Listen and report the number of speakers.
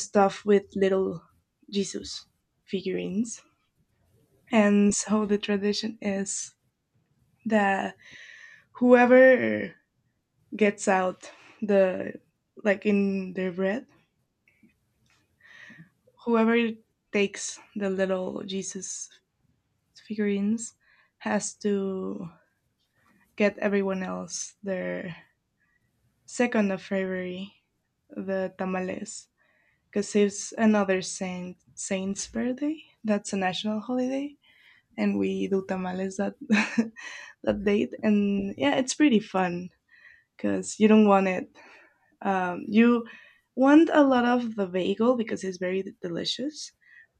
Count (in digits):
1